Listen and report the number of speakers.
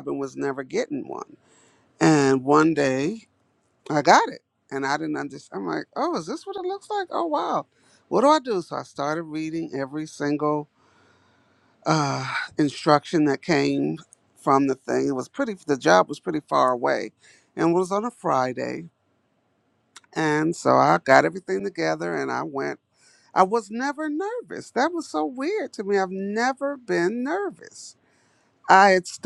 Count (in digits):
1